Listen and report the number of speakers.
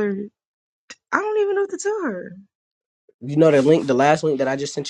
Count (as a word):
two